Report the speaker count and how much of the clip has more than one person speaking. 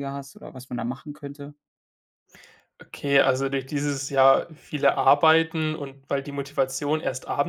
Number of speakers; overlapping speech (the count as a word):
two, no overlap